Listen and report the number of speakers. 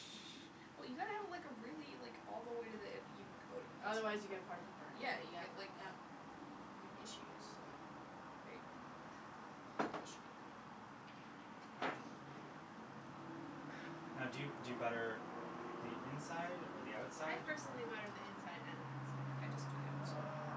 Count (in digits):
4